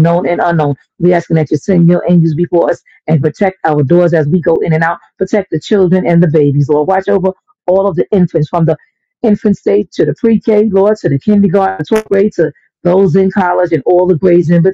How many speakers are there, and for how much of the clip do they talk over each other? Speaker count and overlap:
1, no overlap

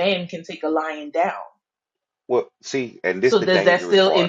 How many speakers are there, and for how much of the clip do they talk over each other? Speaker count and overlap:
2, about 23%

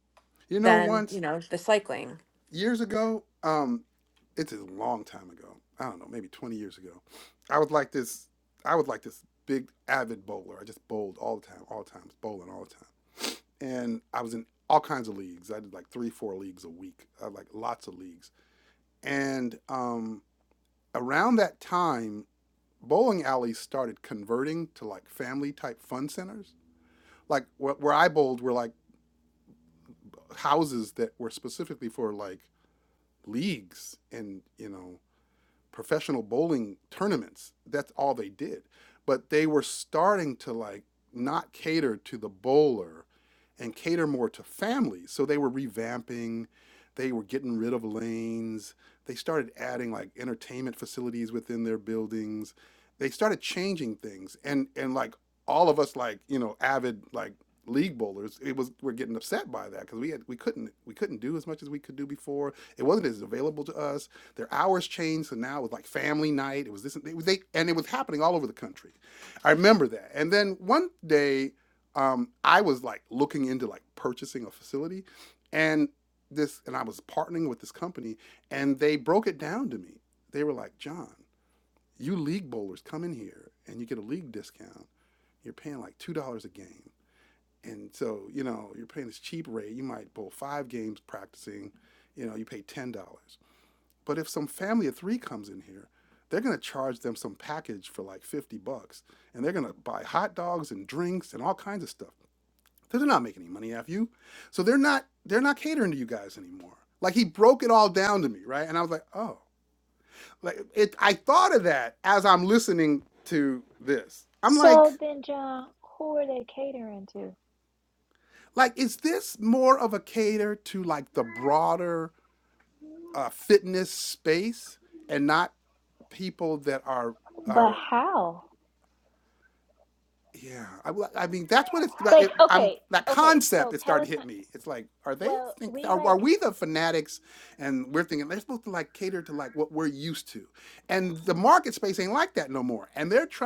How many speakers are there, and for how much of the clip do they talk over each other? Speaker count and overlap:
3, about 3%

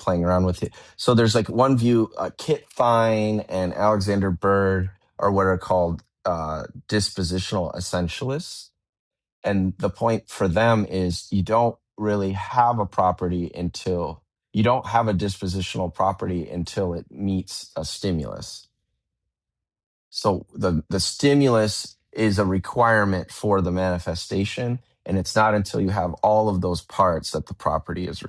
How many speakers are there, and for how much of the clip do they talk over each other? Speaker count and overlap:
1, no overlap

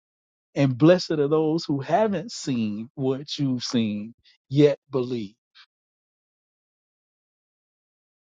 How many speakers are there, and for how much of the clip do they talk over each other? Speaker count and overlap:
1, no overlap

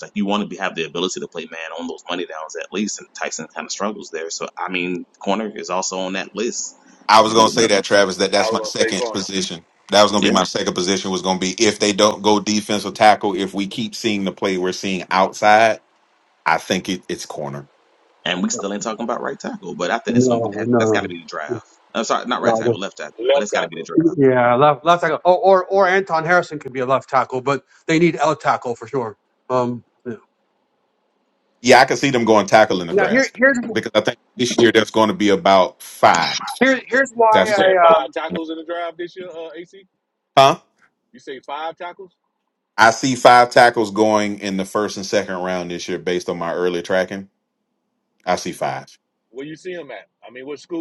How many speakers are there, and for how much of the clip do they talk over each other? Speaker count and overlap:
4, about 10%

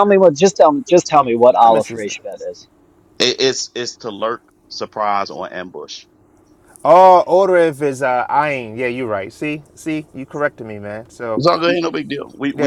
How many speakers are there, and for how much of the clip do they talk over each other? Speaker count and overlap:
3, about 9%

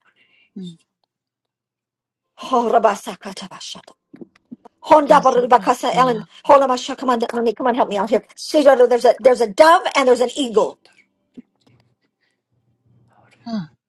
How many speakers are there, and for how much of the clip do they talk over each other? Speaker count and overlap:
2, about 9%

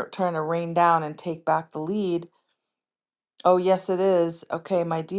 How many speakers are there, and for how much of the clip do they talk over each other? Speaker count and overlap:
1, no overlap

